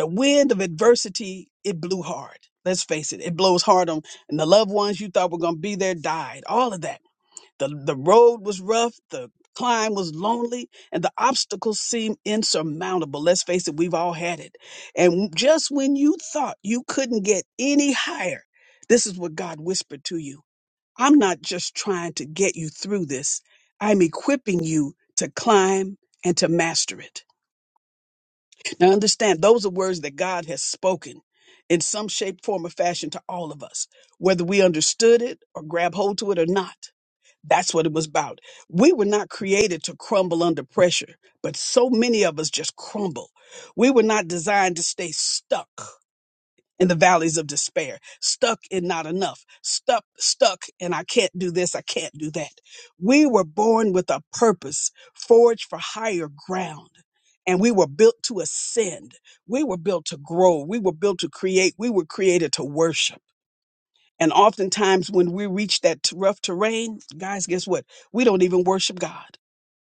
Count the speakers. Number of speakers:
one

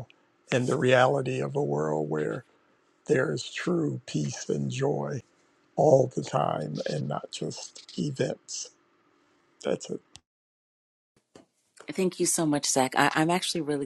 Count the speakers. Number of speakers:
two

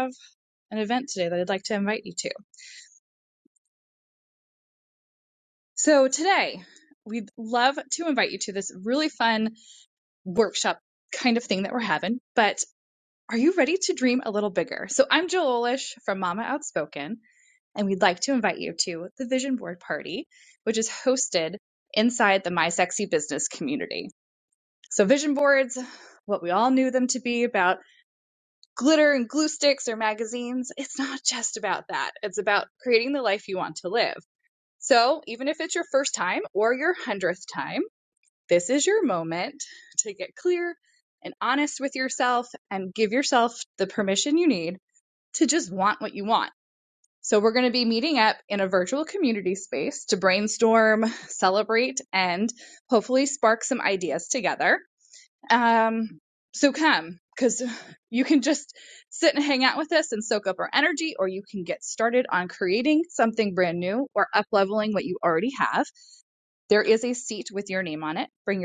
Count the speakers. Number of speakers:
one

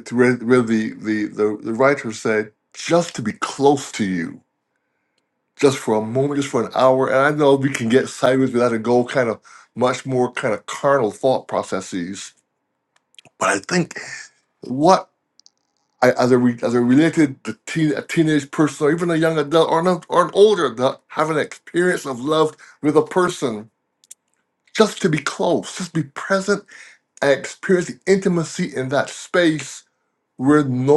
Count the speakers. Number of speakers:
one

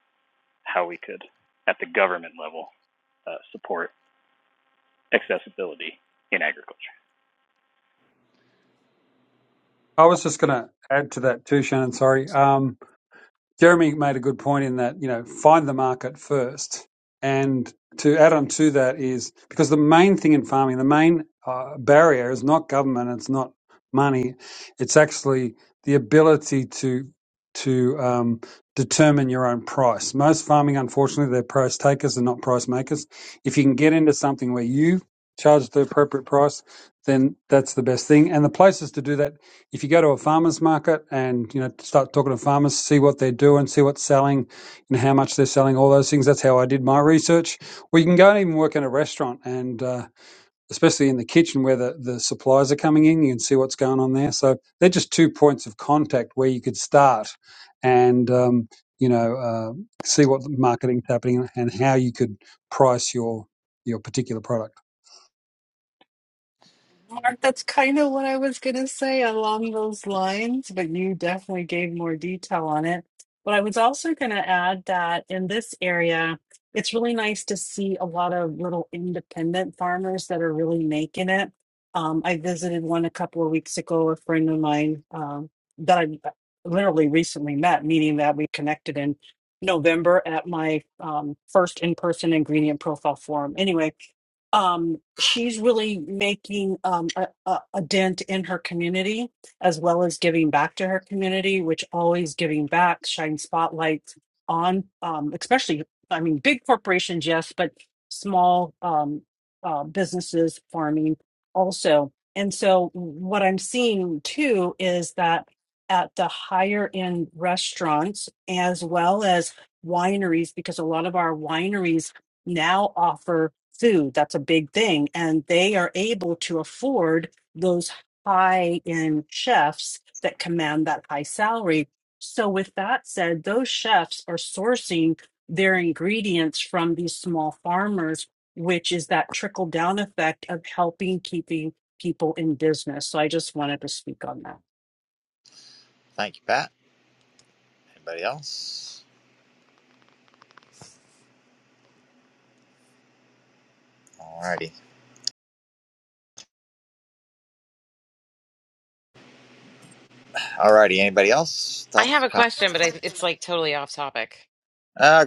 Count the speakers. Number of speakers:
five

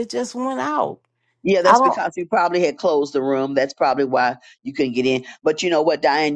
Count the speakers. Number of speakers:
two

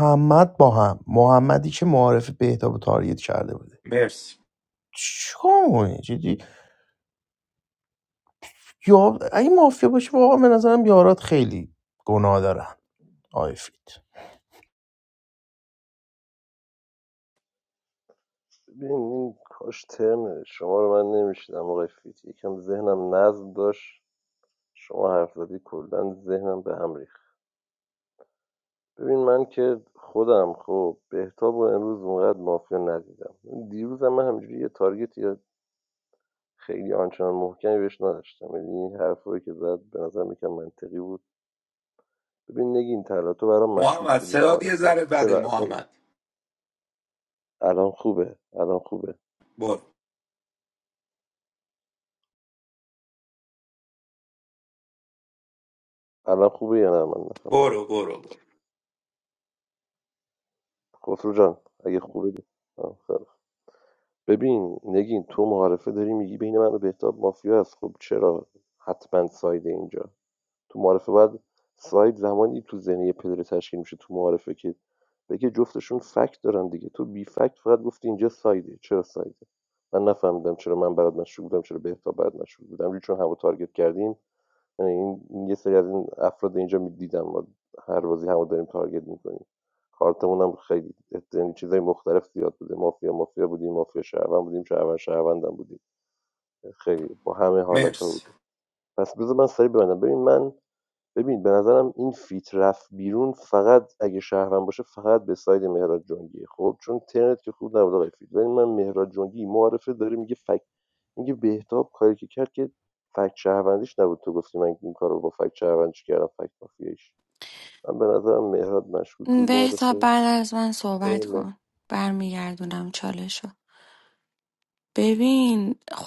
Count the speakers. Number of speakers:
four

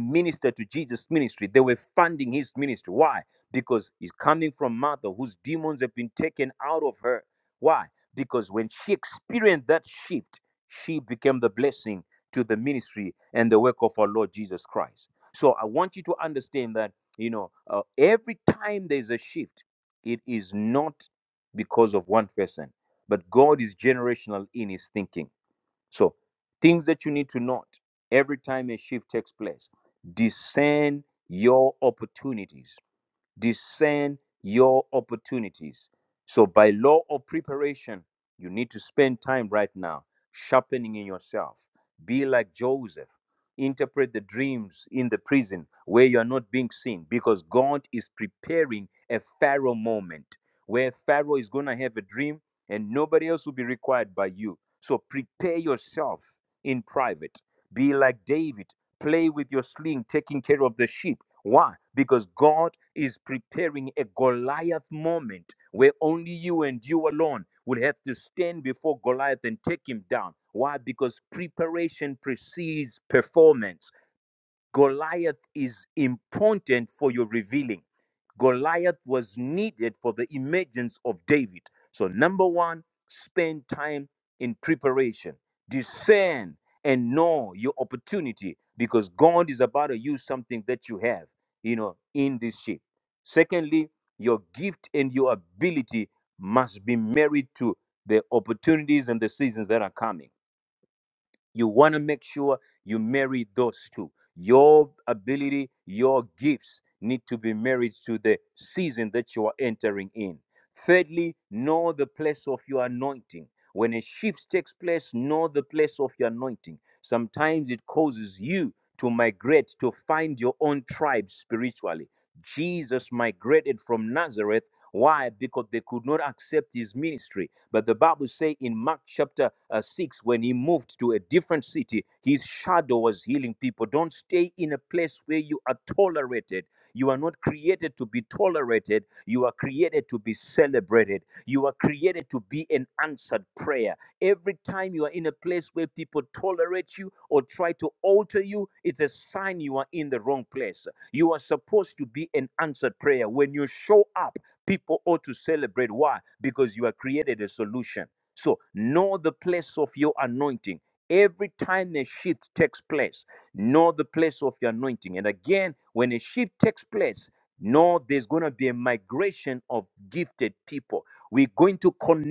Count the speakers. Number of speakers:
one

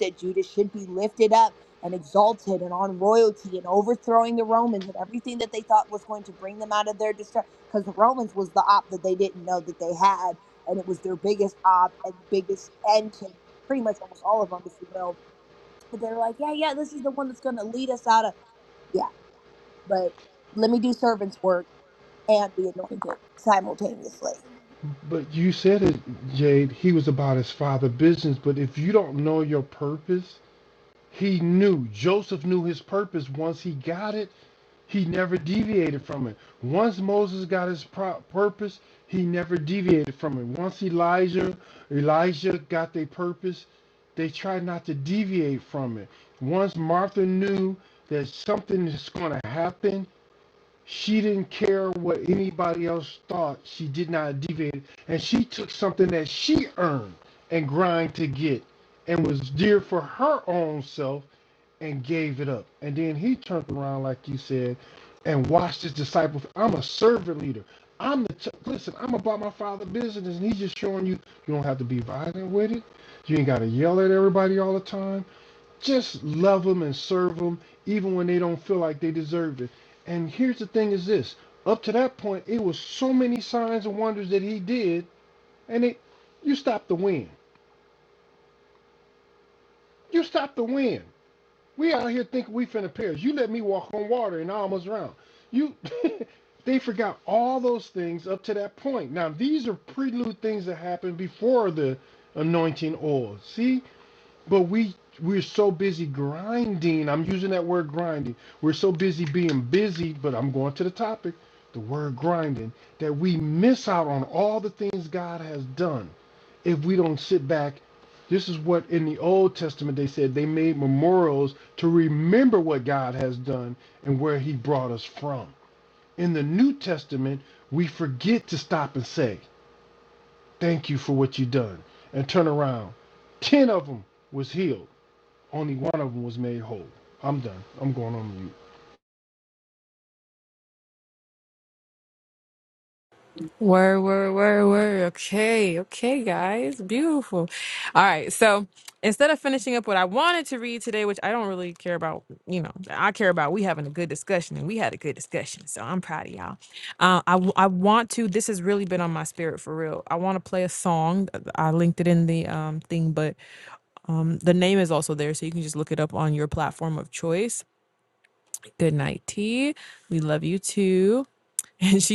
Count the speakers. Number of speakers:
three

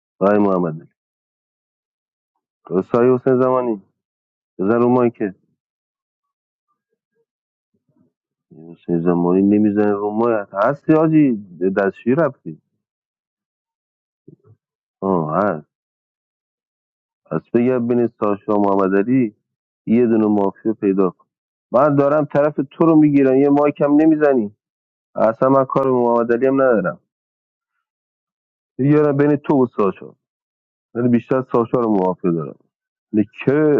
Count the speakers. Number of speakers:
one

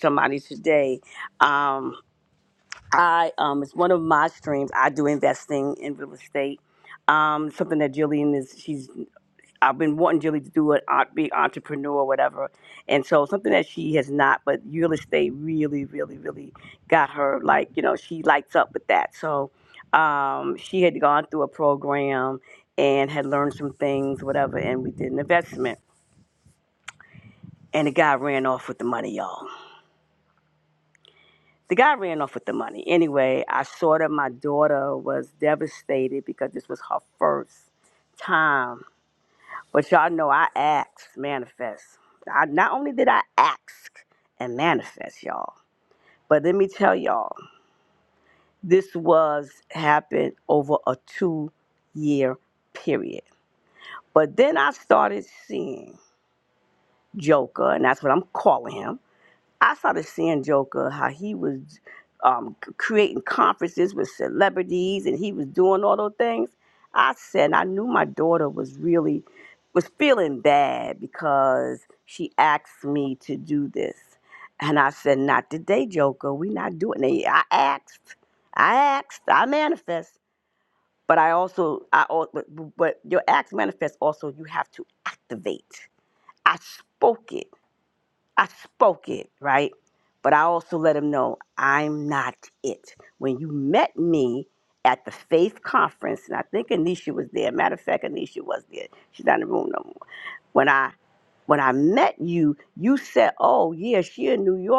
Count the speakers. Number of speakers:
one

